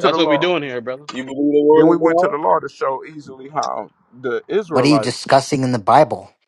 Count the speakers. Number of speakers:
4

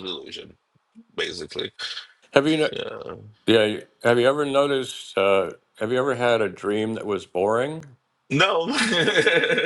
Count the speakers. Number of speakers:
2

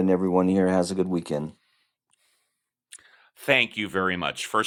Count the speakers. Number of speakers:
2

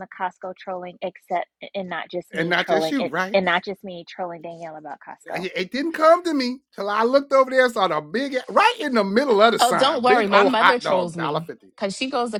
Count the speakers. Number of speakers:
3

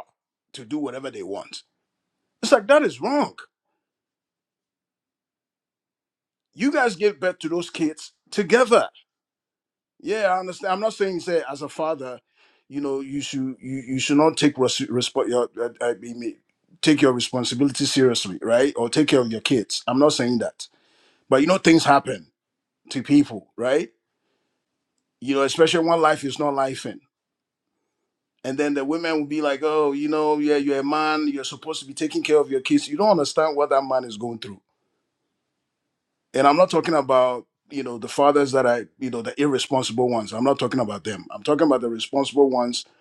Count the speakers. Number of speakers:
1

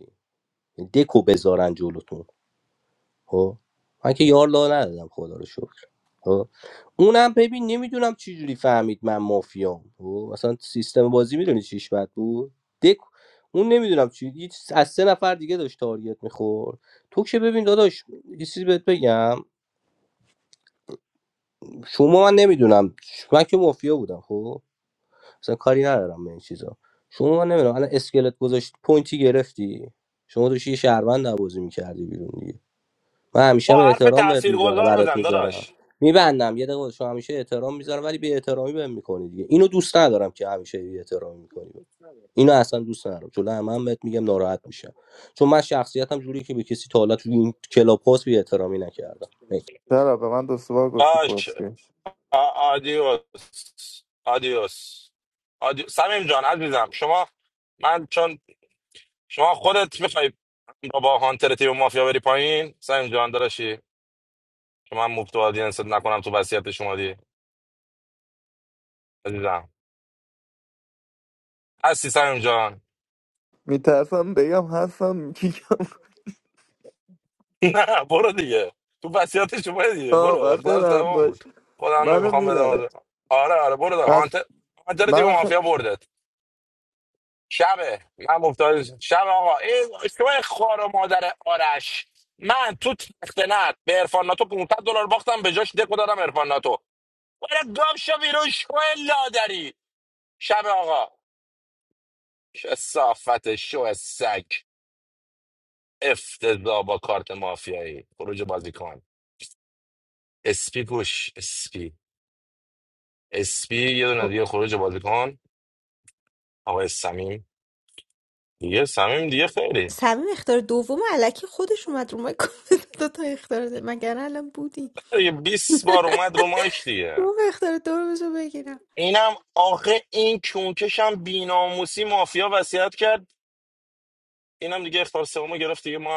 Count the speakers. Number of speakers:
4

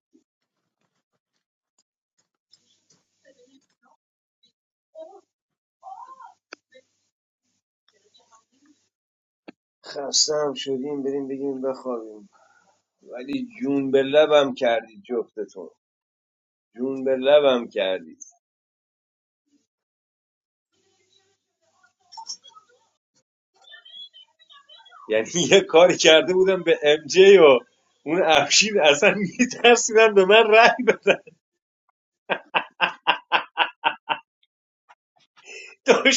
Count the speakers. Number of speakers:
1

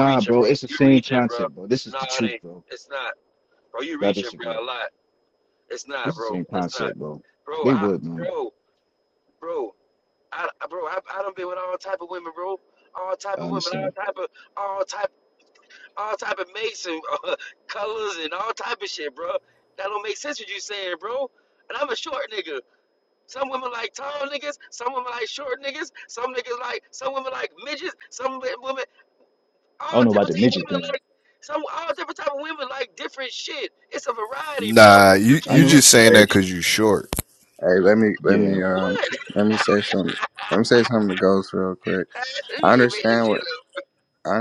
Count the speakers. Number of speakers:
4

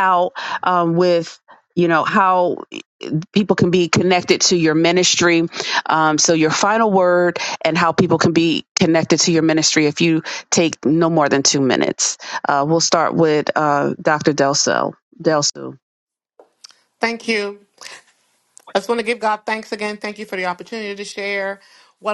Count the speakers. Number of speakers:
2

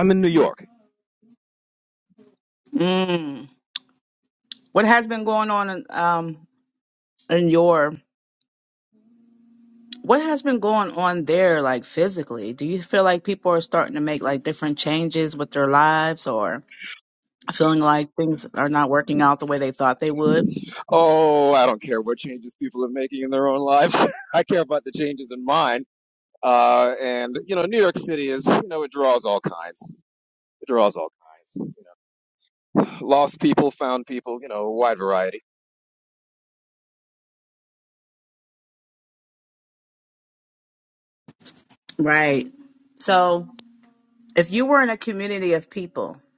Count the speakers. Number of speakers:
2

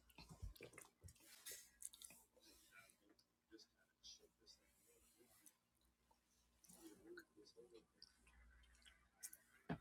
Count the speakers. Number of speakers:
0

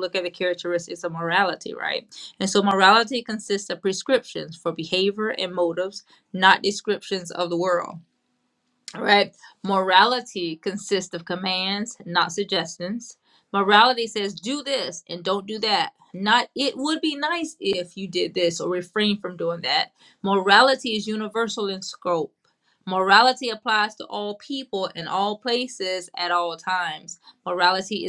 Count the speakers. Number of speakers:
1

